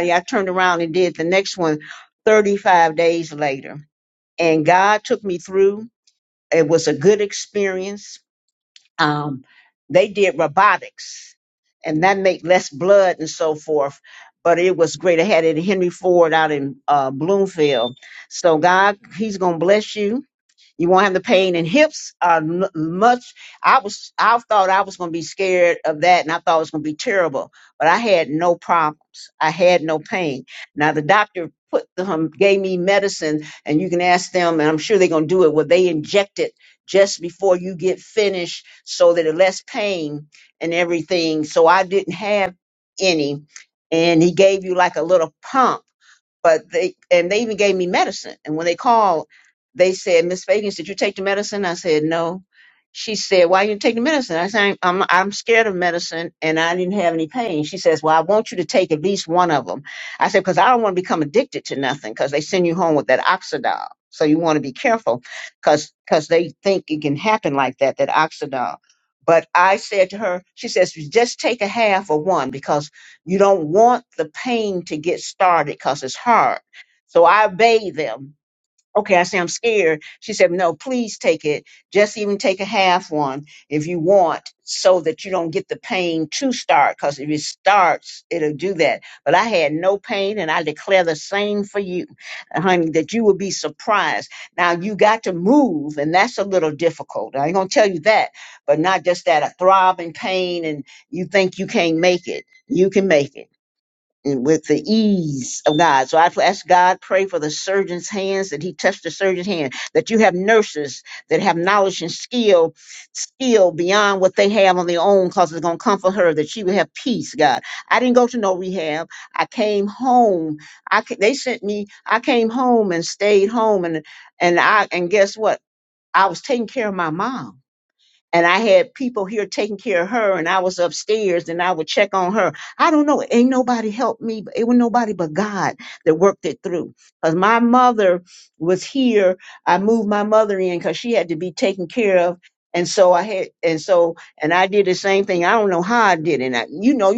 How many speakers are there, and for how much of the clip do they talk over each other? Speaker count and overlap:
one, no overlap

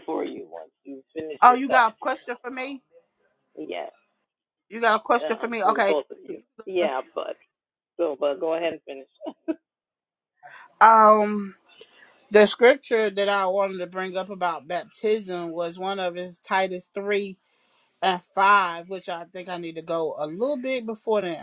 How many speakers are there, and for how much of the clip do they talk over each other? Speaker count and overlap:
two, about 6%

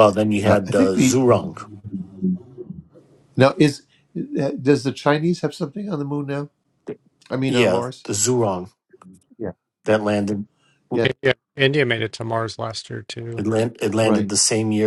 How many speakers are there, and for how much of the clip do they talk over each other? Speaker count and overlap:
three, about 10%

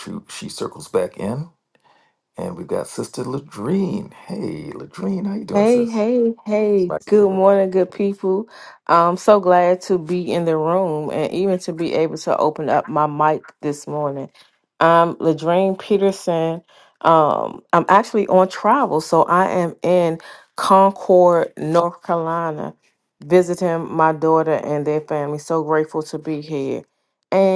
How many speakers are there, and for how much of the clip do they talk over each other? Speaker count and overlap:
two, about 3%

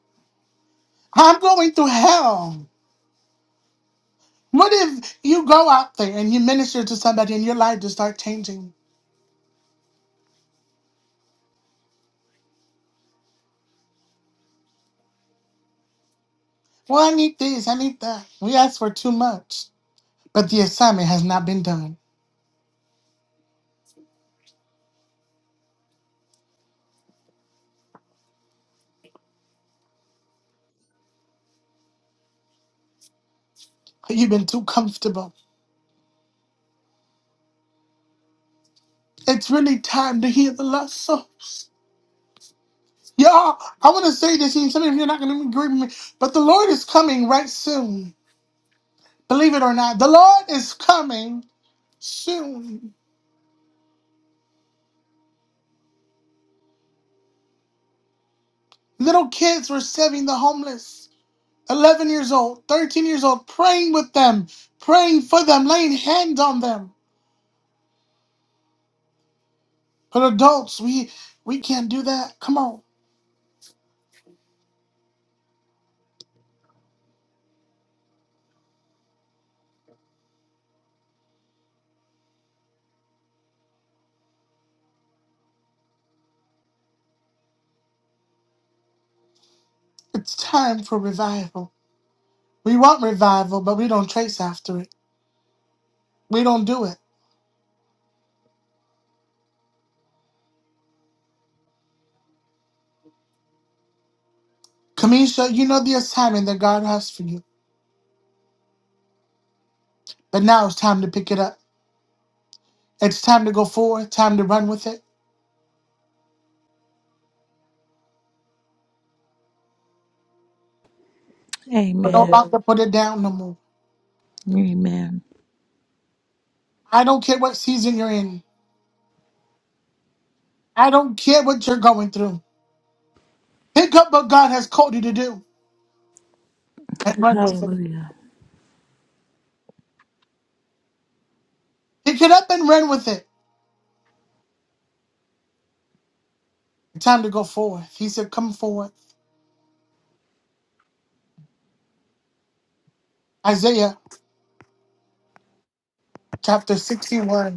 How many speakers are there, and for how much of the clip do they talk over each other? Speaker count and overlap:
two, about 1%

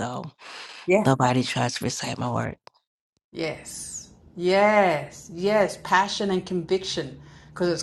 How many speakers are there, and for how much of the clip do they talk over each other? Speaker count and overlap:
two, about 1%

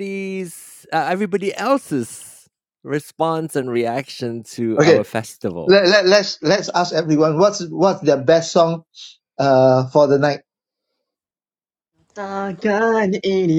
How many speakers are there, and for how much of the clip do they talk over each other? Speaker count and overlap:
three, about 3%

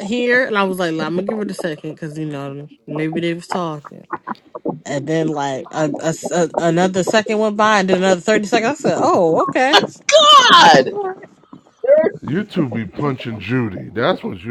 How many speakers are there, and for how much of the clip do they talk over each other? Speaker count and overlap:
three, no overlap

